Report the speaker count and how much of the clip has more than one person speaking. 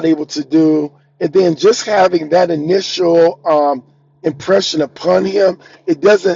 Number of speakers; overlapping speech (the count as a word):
one, no overlap